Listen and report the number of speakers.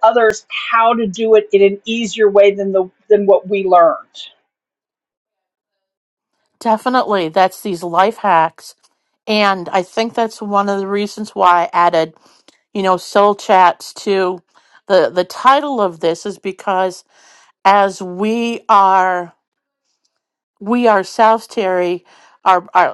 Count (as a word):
two